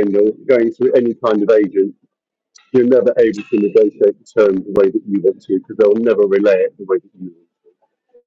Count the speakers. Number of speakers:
one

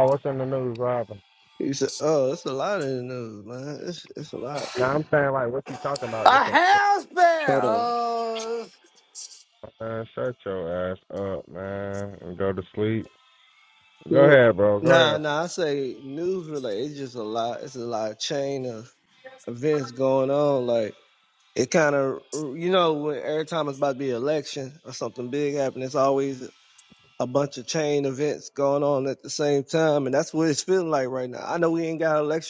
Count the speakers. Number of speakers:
three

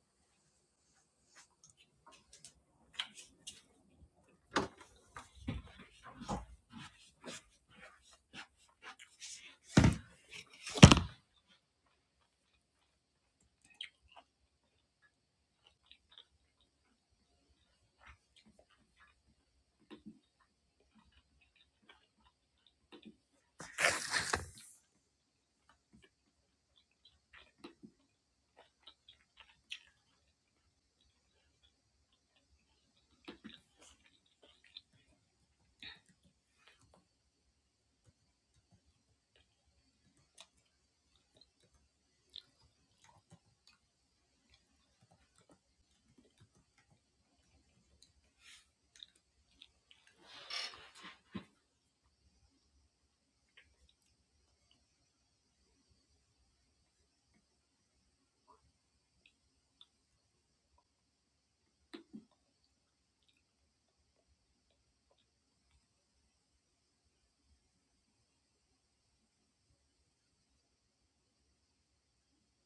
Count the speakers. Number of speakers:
zero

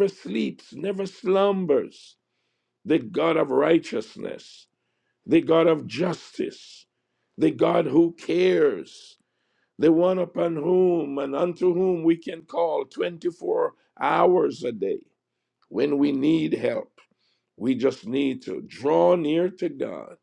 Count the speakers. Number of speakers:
one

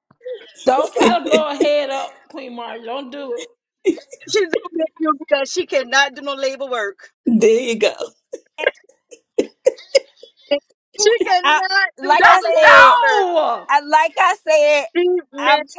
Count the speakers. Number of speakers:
four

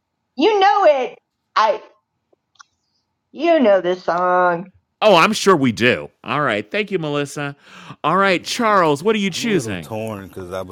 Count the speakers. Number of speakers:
three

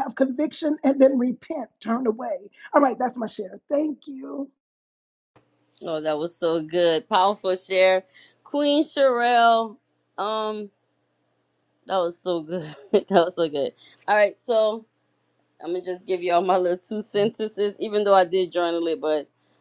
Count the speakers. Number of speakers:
two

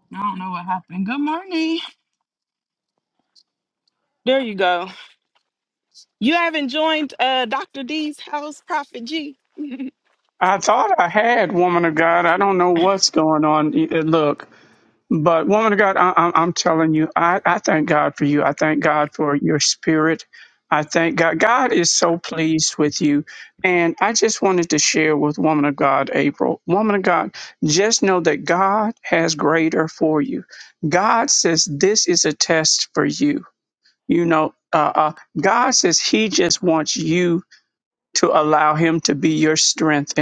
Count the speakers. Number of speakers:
two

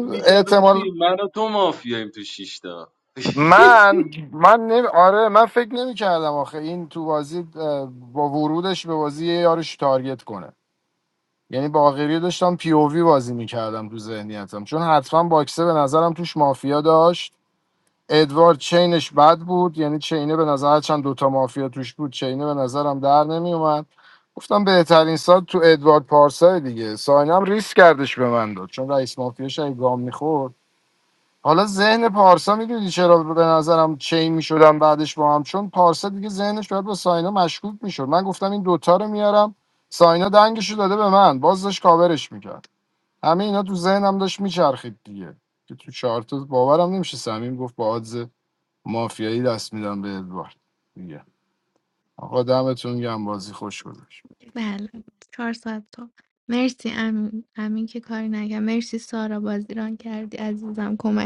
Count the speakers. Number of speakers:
three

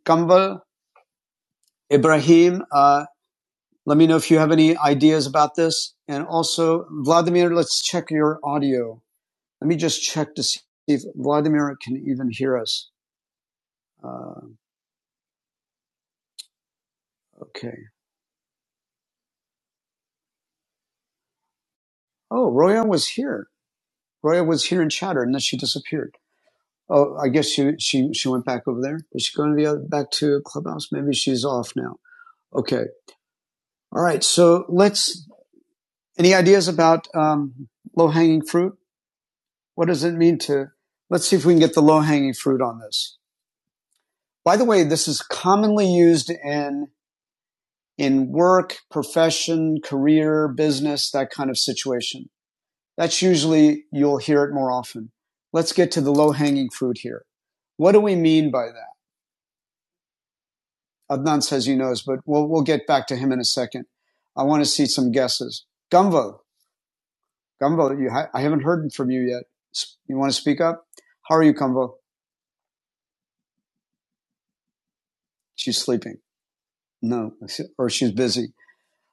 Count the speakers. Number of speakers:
one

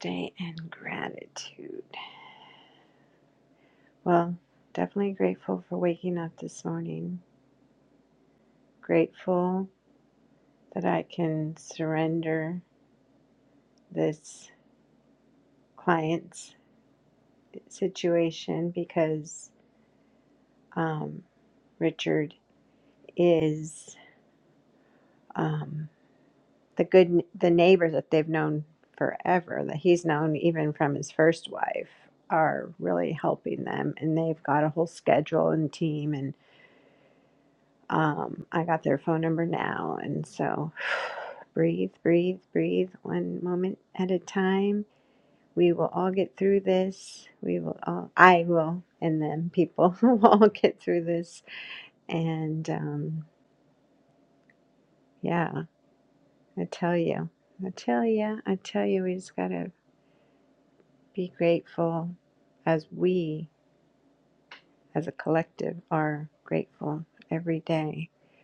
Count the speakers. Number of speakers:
one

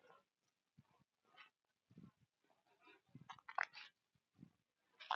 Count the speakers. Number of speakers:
zero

